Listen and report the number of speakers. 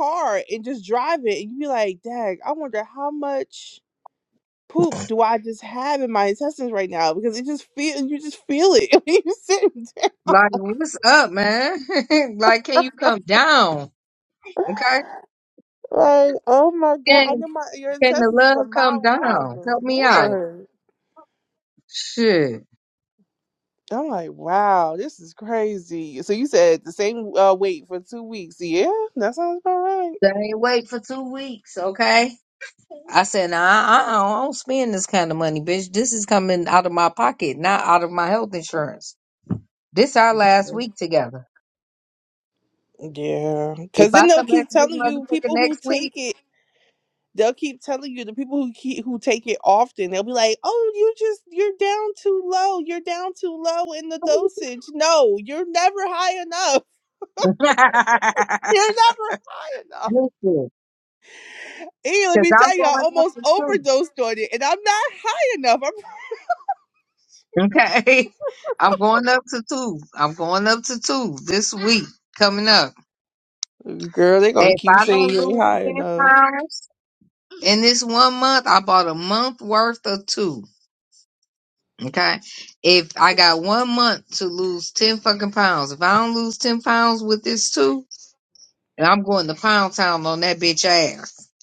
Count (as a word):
two